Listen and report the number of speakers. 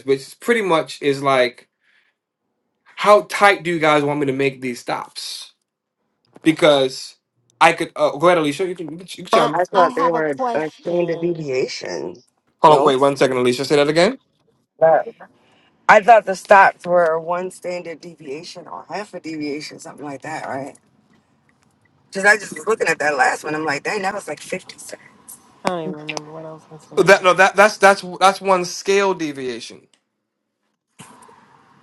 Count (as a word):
three